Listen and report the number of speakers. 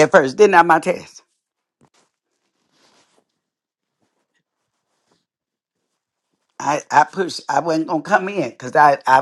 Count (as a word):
one